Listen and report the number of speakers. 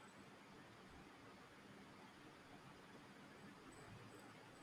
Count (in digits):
0